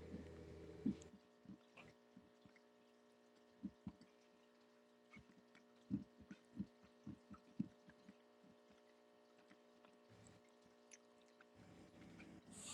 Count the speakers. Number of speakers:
zero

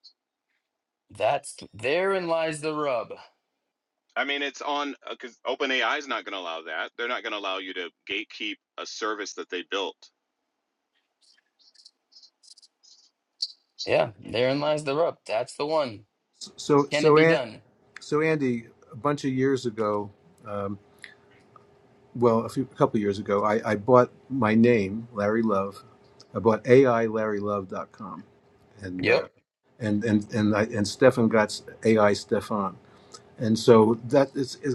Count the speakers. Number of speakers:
three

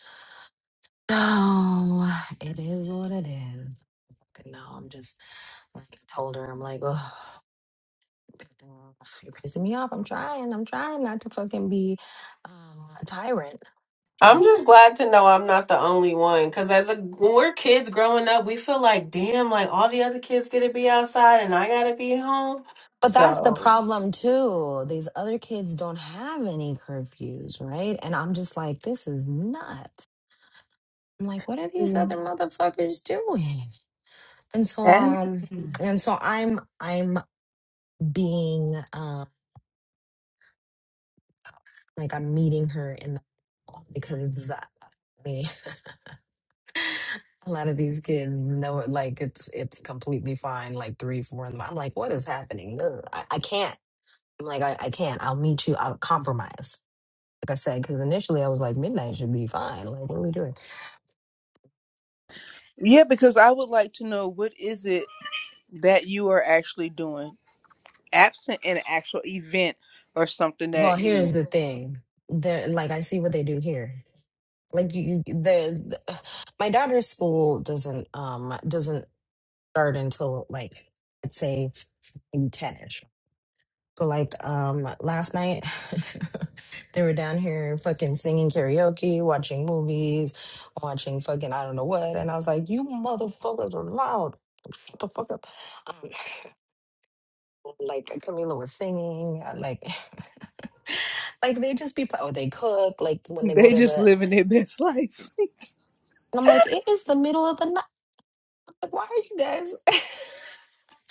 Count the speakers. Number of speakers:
three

